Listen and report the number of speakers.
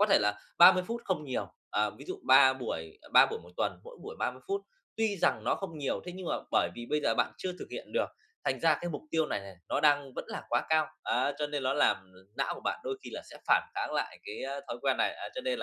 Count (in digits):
1